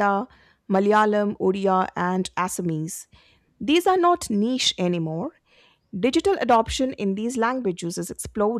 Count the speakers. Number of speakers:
1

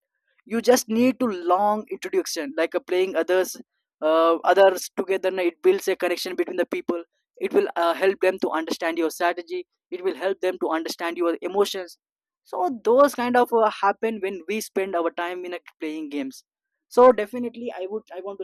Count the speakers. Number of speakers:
1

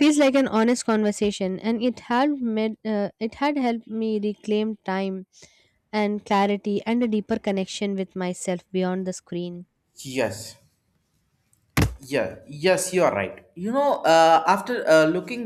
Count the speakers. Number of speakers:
2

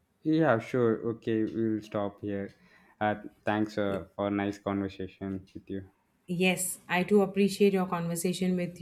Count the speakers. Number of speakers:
2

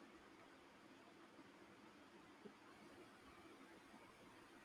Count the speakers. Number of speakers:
0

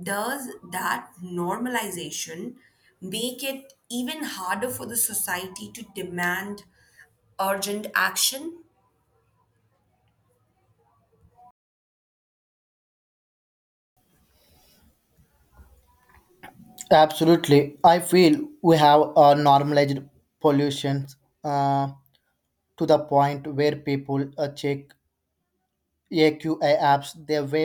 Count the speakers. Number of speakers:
2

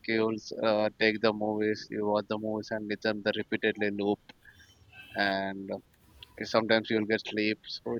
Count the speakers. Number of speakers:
1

